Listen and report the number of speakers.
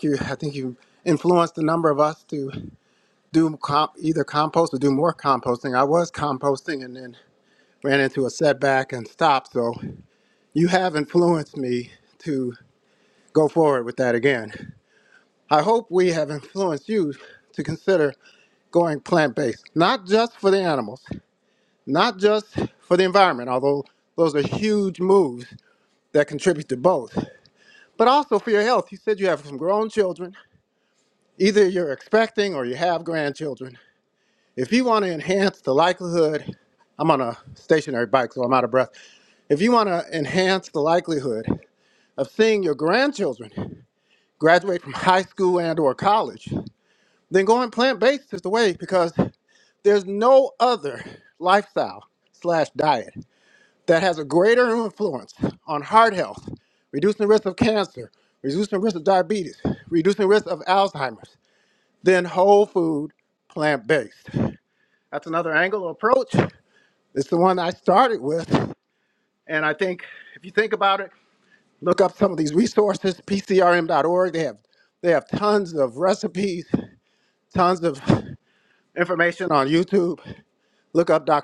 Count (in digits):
1